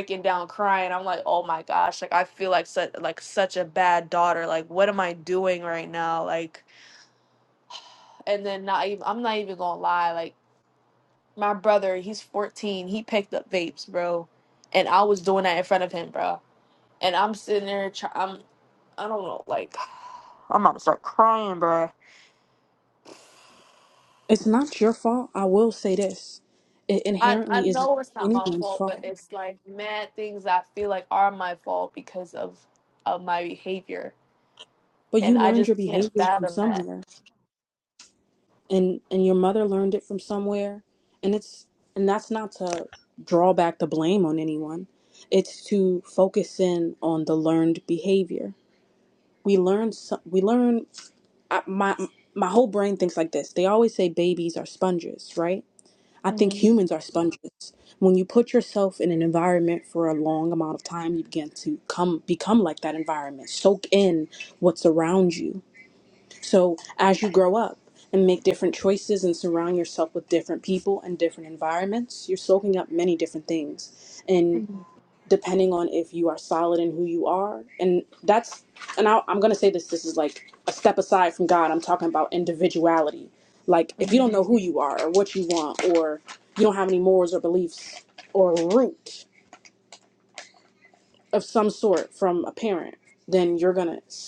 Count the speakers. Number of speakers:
two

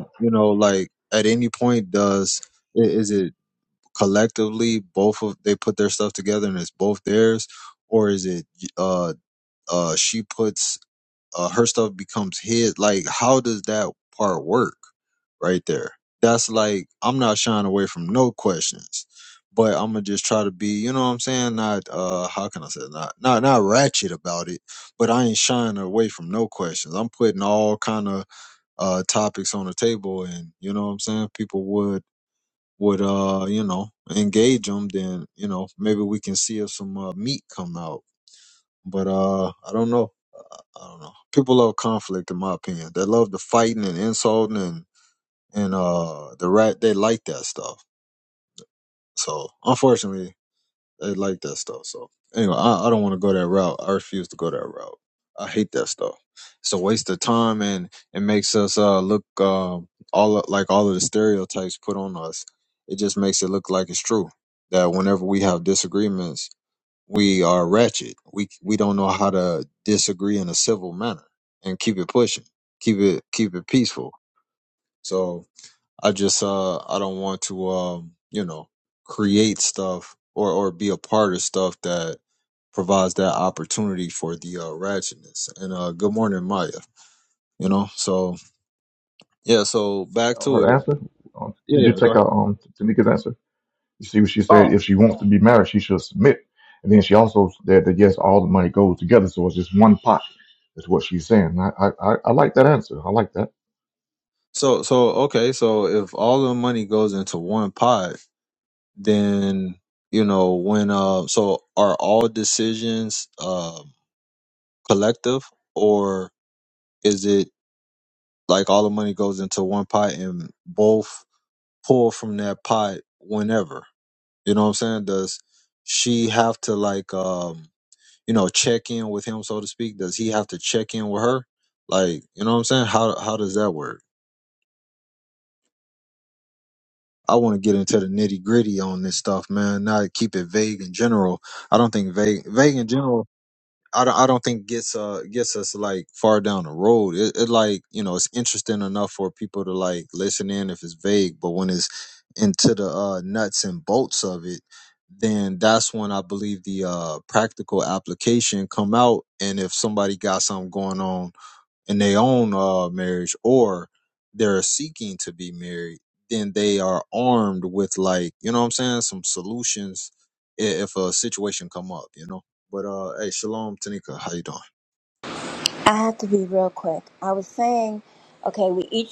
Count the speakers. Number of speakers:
three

